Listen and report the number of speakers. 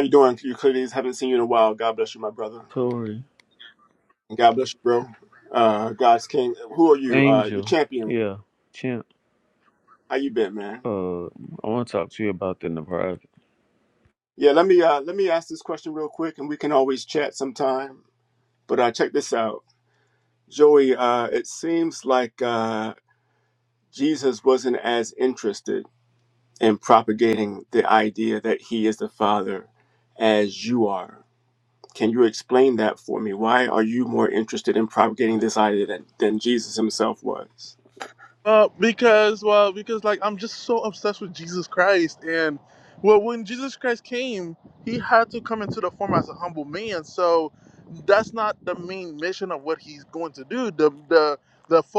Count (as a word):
three